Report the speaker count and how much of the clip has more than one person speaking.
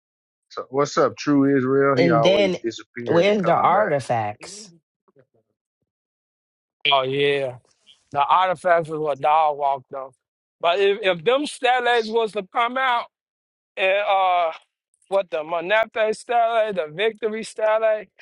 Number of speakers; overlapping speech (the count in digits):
3, about 8%